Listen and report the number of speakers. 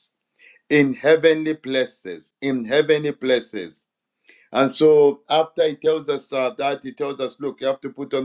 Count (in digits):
1